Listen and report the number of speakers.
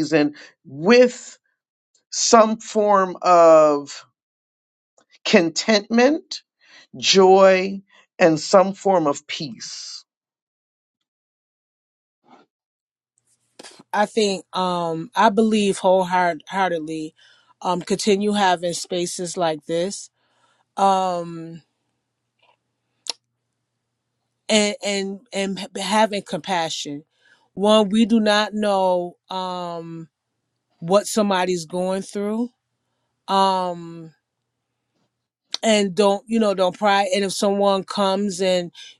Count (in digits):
2